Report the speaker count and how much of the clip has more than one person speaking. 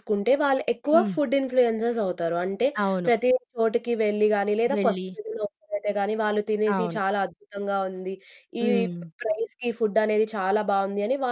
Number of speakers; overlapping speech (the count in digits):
2, about 10%